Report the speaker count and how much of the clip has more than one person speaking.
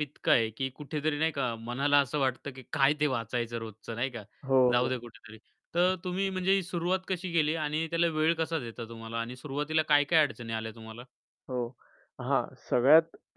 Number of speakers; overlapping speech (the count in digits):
2, about 2%